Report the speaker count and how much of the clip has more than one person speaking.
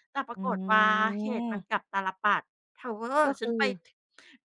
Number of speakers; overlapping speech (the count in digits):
2, about 22%